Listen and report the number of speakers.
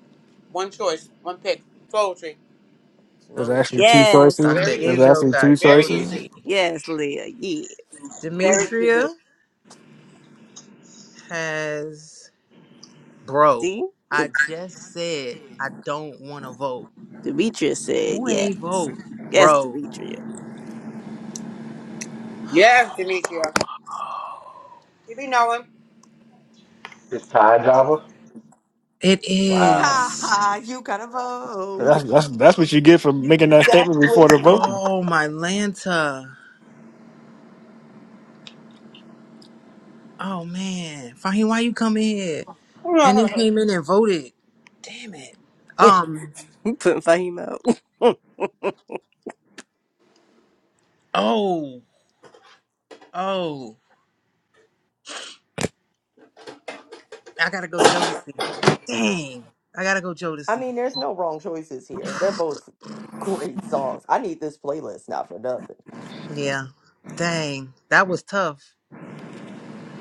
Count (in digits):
6